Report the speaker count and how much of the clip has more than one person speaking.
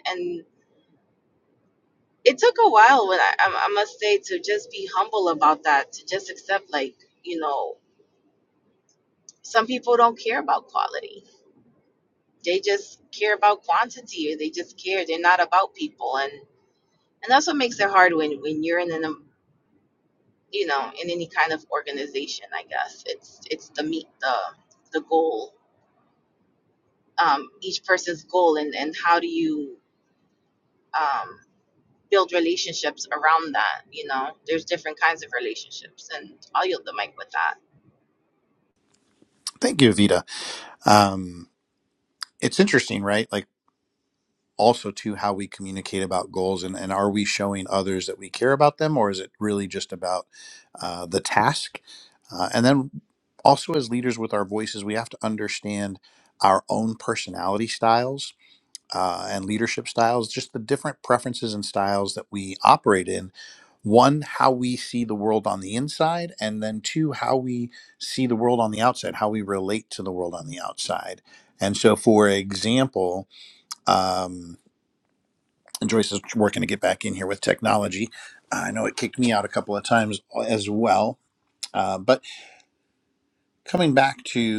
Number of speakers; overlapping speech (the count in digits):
2, no overlap